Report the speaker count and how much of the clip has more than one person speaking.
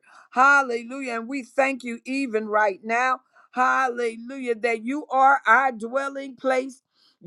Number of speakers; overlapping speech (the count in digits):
1, no overlap